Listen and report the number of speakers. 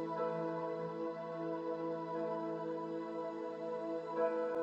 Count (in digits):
0